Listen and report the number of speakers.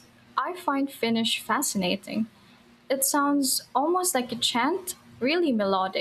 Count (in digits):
1